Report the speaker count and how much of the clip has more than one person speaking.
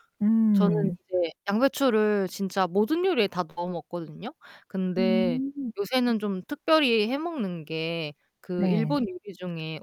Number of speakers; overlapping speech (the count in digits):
2, about 12%